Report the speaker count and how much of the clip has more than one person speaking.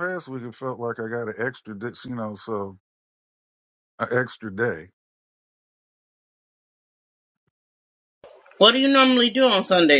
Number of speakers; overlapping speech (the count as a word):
two, no overlap